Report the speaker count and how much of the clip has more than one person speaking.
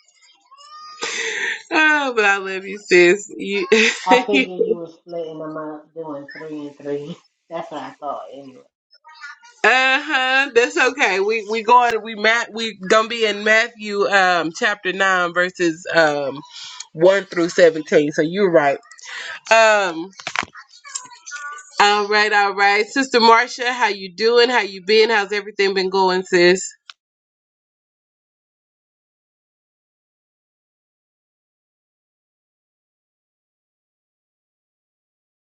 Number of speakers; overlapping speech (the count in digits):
2, no overlap